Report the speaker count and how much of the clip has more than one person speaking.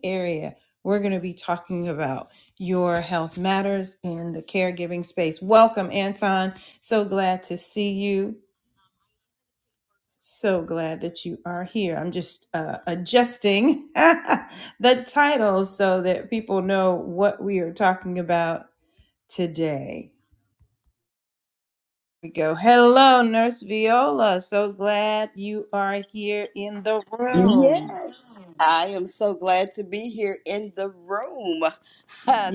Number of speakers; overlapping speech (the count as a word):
two, about 2%